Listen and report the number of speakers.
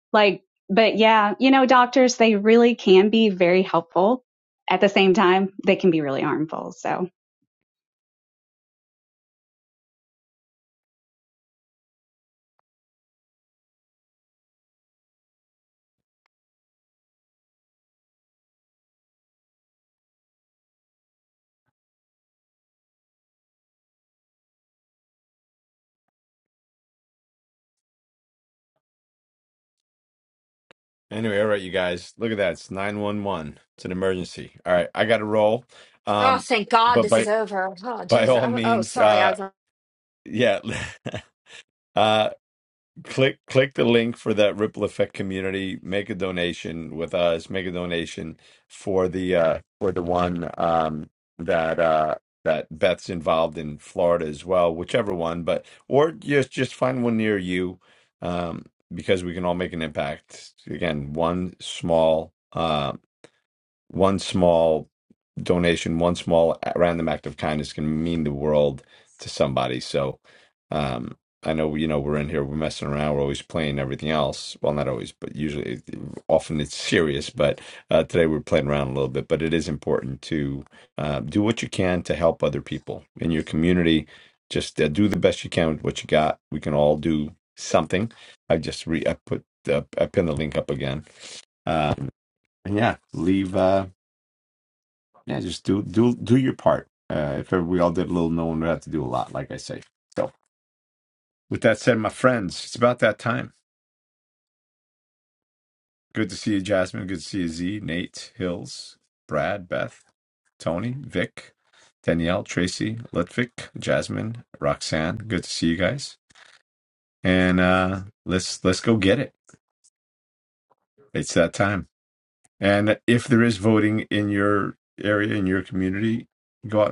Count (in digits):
3